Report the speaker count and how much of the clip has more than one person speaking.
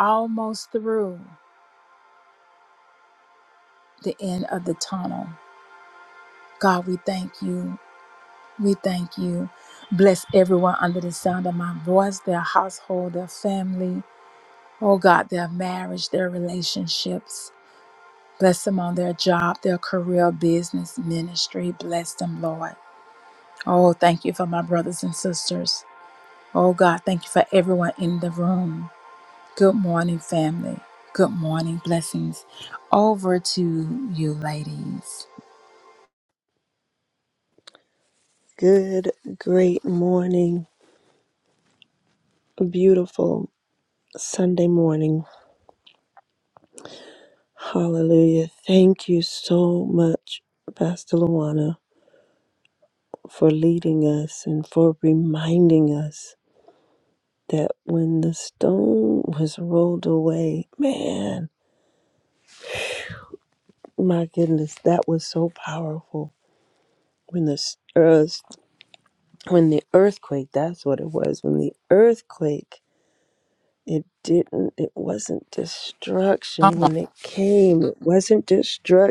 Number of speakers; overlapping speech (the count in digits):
2, no overlap